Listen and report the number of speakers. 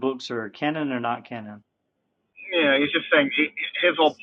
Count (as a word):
two